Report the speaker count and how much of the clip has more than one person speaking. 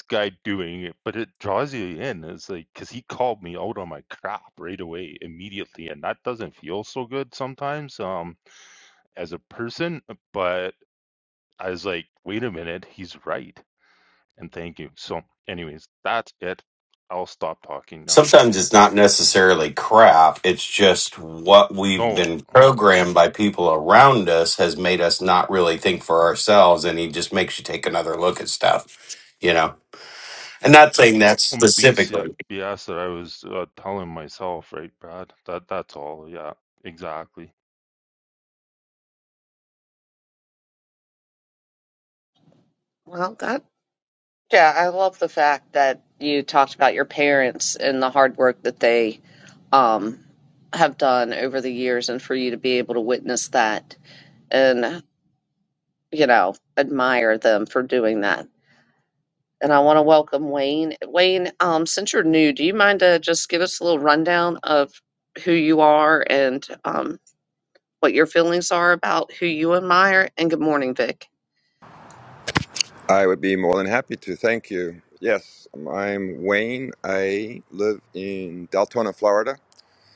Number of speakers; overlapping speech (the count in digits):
4, about 2%